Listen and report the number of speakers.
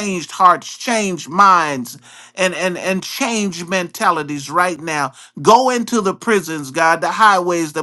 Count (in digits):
1